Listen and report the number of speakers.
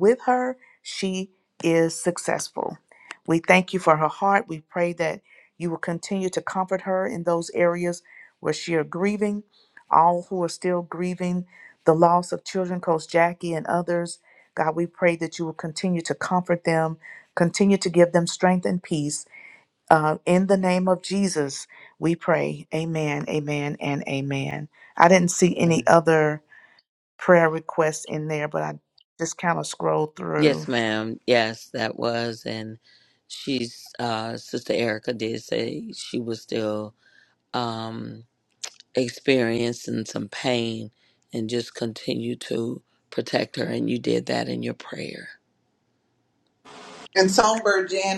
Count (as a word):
three